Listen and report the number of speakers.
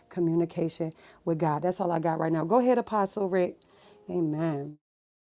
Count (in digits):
1